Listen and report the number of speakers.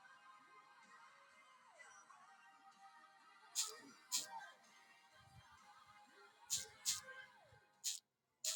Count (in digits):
0